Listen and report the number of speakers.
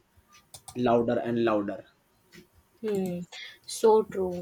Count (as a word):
two